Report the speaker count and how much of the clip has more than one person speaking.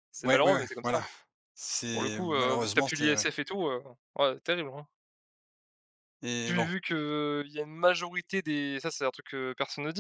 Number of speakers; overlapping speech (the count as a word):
two, about 24%